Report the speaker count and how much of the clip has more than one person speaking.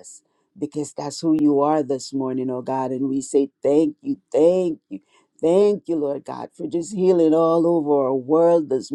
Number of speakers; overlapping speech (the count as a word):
one, no overlap